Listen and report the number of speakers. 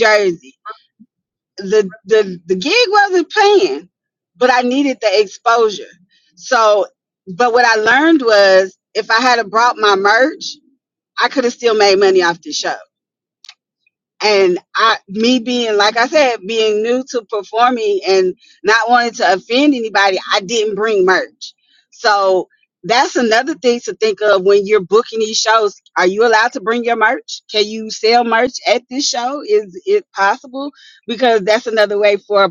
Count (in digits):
1